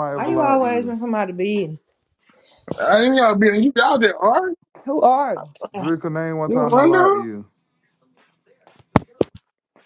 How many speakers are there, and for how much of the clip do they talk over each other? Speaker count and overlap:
3, about 16%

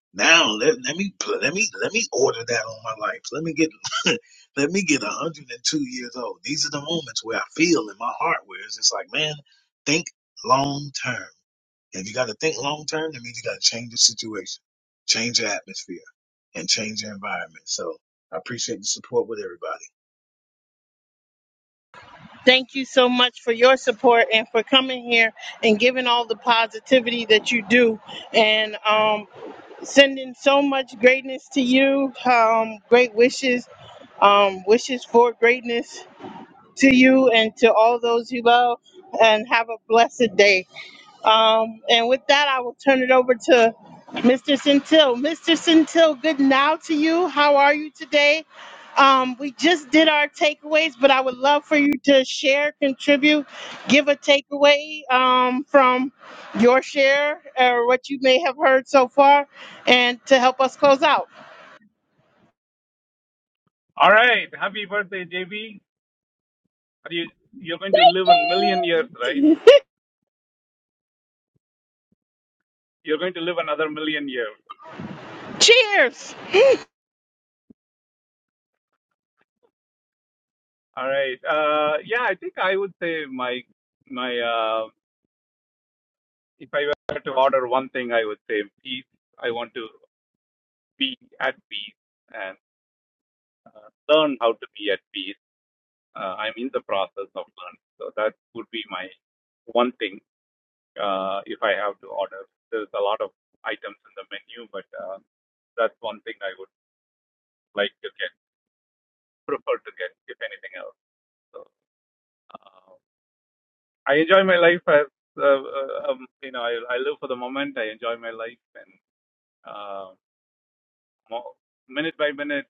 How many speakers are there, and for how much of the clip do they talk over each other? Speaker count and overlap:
3, no overlap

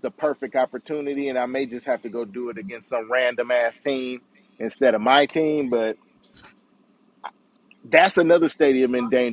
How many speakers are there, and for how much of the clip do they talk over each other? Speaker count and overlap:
1, no overlap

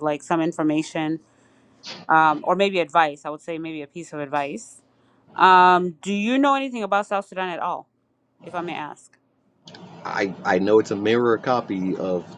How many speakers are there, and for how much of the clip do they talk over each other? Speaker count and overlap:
2, no overlap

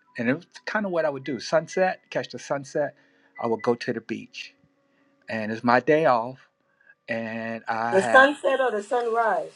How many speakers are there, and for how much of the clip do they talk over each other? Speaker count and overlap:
2, about 4%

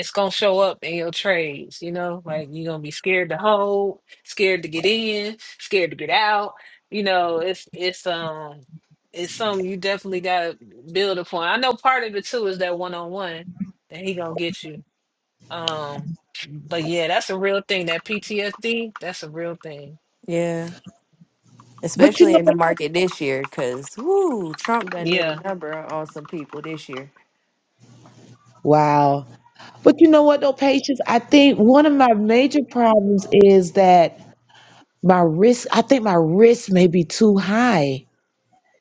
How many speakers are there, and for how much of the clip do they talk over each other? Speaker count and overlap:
3, about 2%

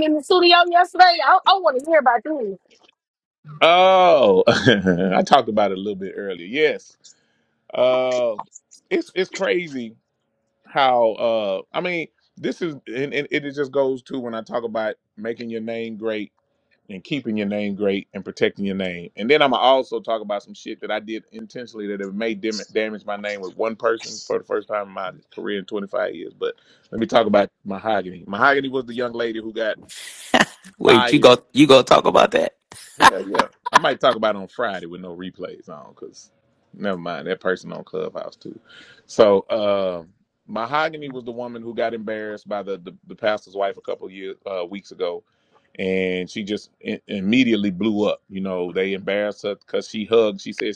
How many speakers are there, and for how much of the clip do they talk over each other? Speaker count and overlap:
3, about 1%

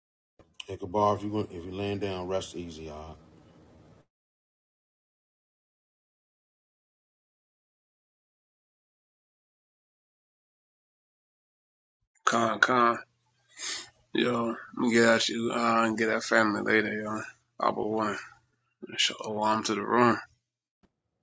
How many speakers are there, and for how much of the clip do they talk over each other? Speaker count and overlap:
2, no overlap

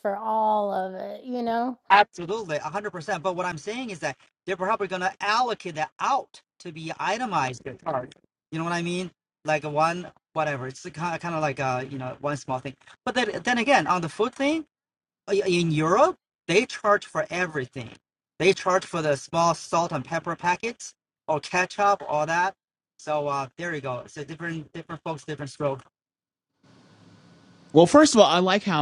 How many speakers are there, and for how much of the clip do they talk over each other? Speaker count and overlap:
3, no overlap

